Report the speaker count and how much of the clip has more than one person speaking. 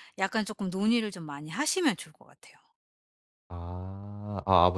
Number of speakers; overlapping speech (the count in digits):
2, no overlap